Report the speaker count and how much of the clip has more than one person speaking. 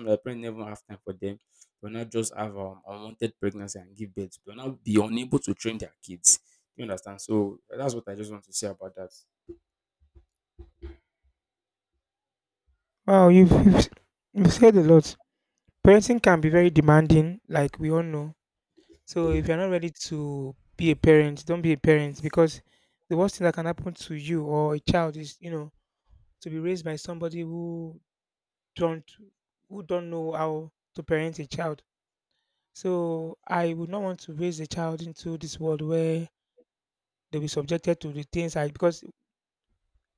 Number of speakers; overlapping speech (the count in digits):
2, no overlap